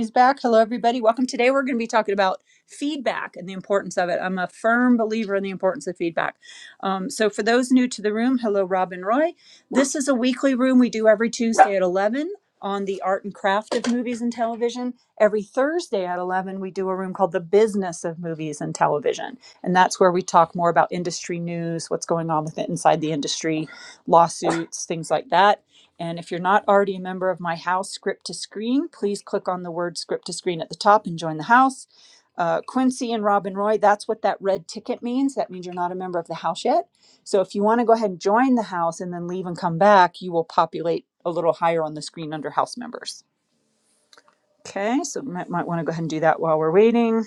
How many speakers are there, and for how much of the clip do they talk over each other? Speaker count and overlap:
1, no overlap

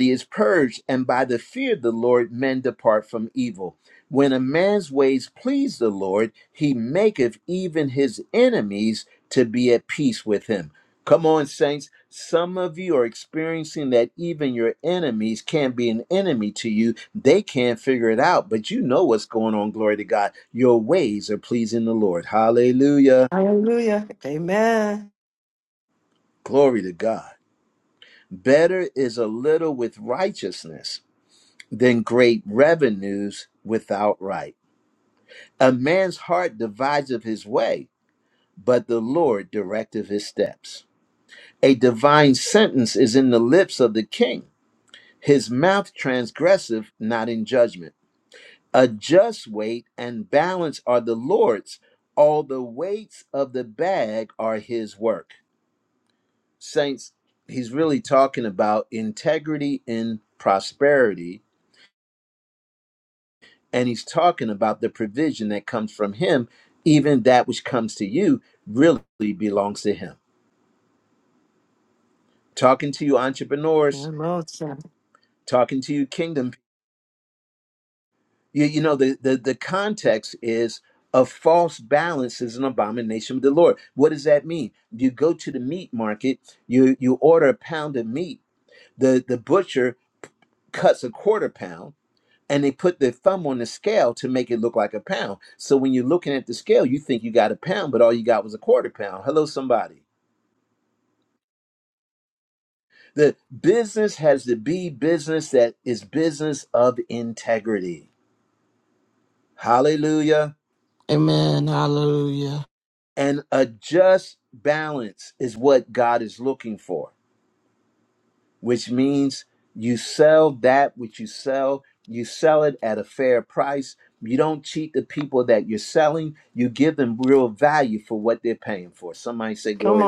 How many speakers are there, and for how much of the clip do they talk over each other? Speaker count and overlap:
3, under 1%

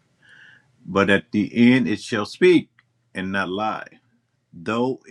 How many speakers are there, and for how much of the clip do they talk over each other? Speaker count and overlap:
1, no overlap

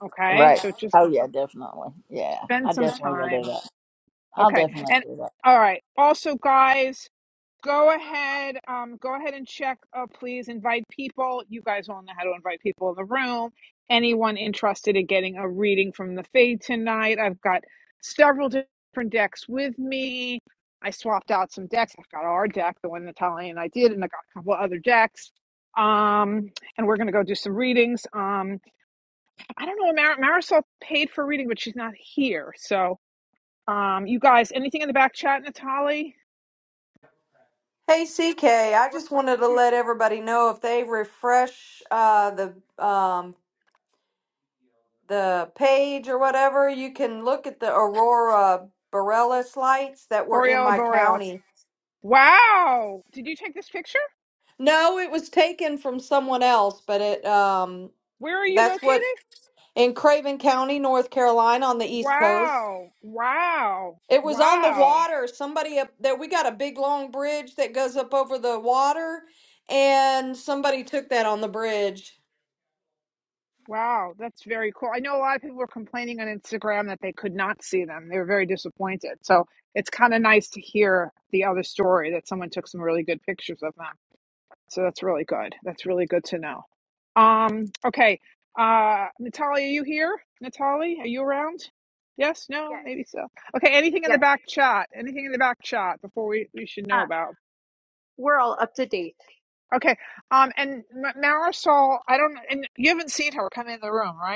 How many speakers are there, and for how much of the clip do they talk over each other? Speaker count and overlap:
4, about 6%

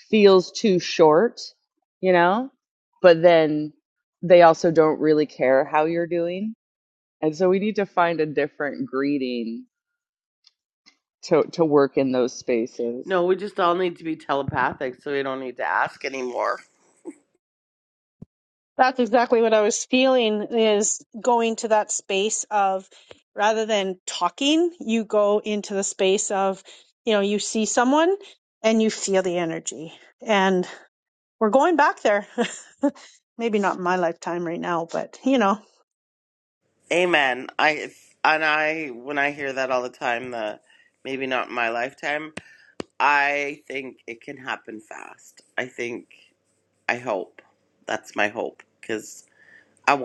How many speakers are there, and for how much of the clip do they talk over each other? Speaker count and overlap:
3, no overlap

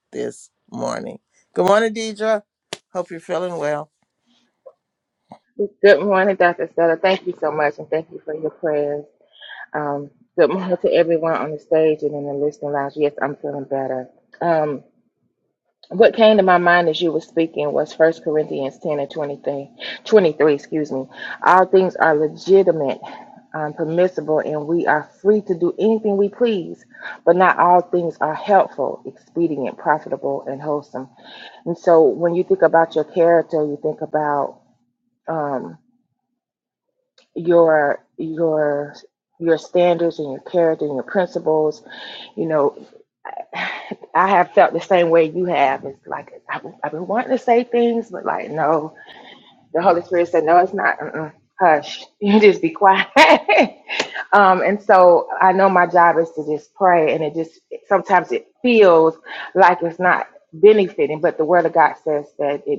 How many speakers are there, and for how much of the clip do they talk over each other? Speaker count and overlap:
2, no overlap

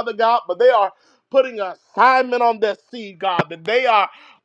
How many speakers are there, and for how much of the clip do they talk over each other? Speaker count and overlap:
1, no overlap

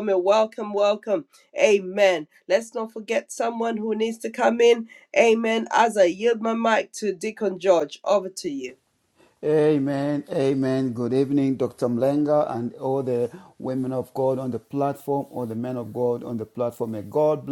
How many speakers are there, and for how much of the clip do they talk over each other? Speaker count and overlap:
2, no overlap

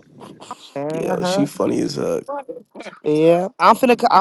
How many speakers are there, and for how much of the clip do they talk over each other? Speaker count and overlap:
2, about 14%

